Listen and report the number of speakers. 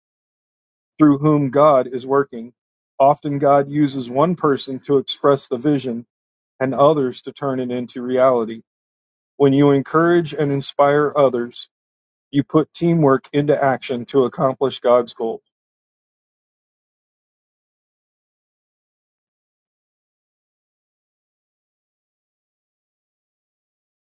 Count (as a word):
one